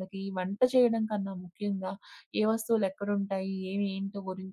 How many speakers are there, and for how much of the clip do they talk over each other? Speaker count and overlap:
1, no overlap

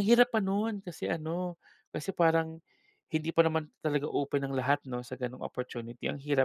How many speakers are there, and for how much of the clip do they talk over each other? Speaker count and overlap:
1, no overlap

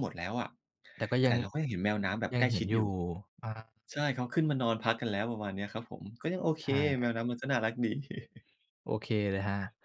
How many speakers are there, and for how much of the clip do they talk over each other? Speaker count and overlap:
2, about 8%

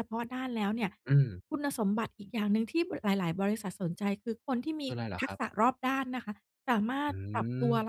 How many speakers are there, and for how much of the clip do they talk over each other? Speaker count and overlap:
2, about 15%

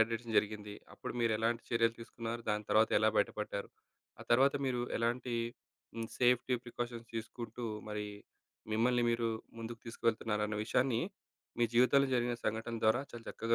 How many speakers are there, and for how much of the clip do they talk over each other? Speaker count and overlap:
1, no overlap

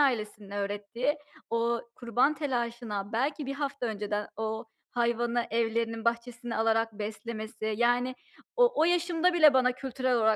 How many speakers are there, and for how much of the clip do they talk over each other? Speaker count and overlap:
1, no overlap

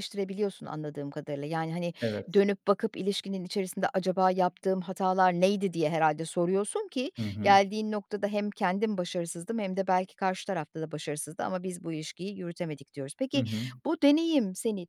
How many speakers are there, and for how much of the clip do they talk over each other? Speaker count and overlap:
2, about 2%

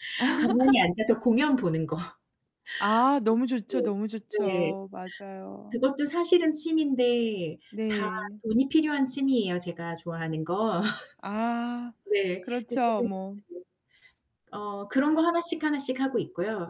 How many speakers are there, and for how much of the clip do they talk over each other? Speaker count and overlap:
2, about 5%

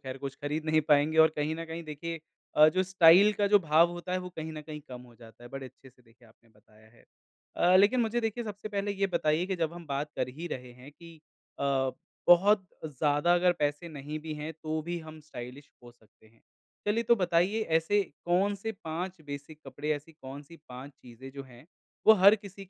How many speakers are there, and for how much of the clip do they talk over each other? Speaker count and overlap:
1, no overlap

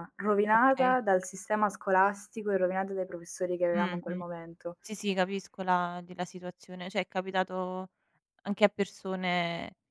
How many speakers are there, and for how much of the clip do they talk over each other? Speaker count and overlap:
2, about 9%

